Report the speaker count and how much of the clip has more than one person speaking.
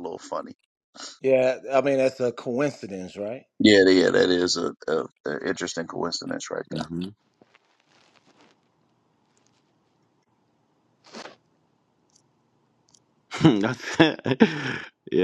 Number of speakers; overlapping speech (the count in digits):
3, under 1%